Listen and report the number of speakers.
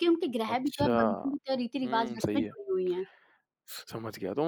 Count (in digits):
2